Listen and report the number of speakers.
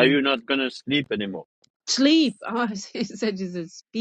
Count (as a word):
two